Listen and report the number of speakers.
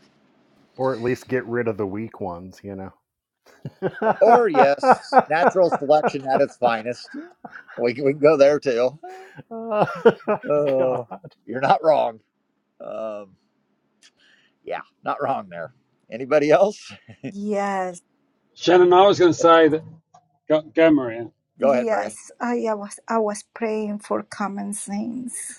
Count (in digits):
4